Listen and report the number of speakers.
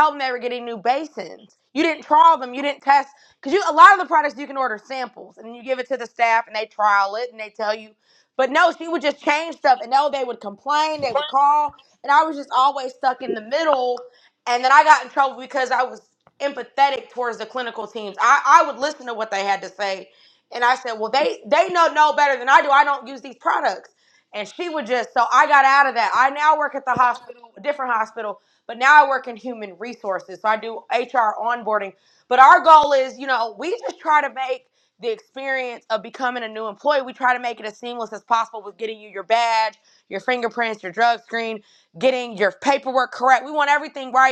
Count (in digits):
1